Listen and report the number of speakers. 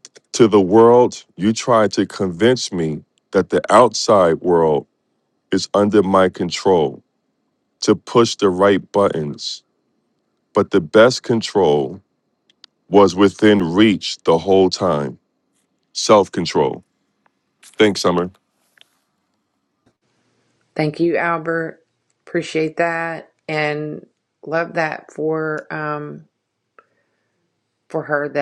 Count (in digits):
2